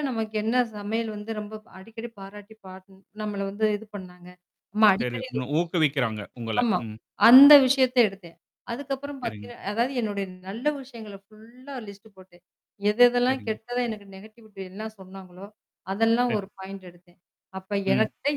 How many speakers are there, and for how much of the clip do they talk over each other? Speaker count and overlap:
2, about 8%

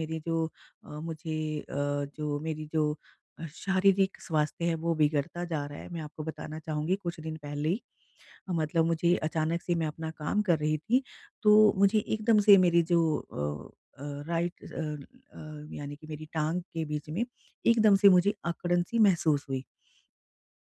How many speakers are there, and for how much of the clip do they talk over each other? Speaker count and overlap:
1, no overlap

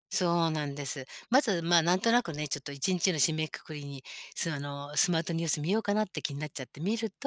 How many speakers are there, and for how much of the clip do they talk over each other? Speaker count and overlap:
1, no overlap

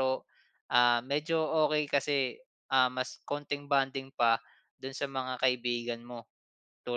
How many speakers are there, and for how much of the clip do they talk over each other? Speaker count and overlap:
1, no overlap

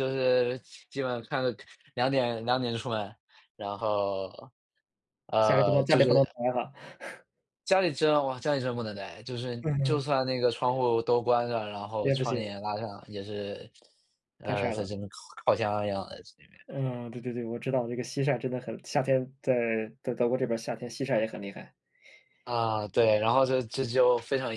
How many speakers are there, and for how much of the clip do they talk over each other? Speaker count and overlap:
2, about 8%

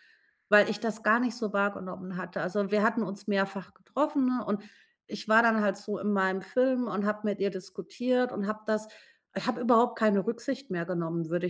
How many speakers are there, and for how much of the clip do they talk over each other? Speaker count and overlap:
1, no overlap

